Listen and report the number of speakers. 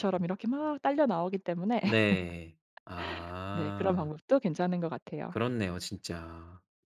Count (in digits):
2